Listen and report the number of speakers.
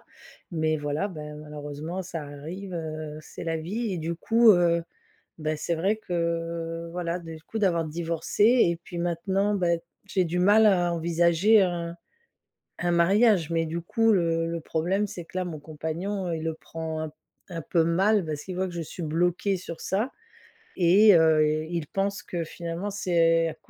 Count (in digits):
1